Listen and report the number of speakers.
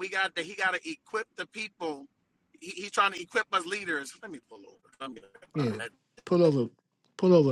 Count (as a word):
two